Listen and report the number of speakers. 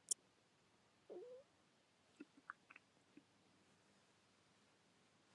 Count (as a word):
zero